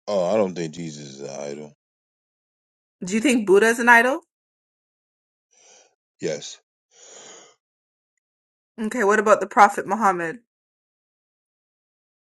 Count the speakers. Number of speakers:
two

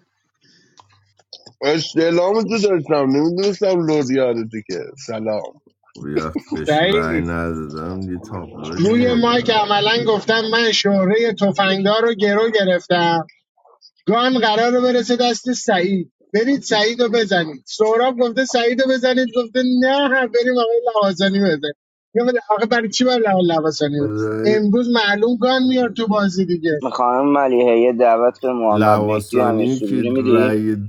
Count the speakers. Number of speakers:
four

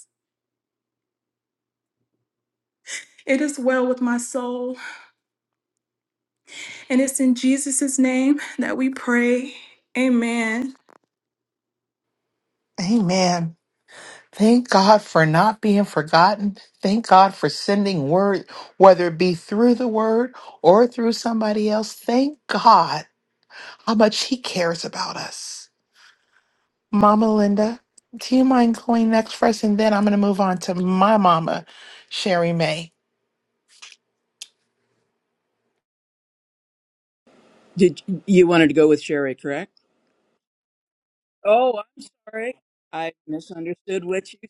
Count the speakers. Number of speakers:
three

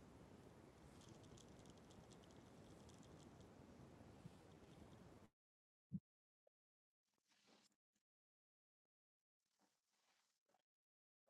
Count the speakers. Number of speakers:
zero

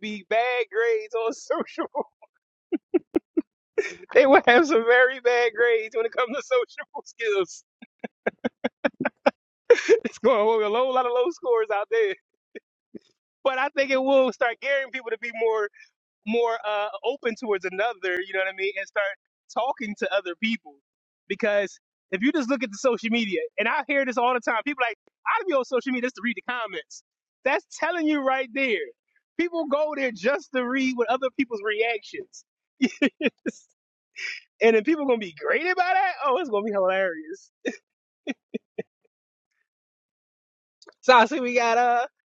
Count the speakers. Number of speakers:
one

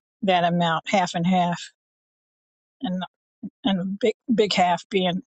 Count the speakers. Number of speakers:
one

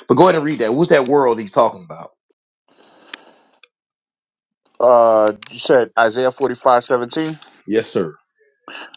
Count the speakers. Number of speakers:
two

